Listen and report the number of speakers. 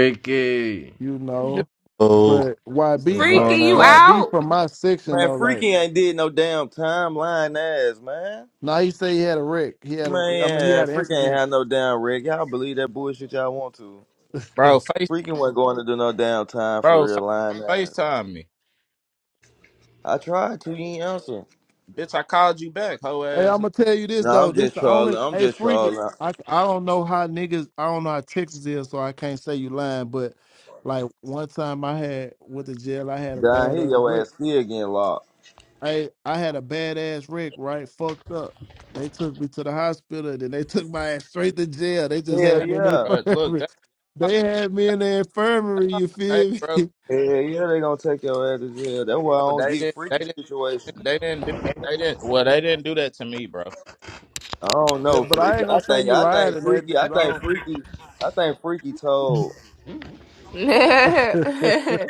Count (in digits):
5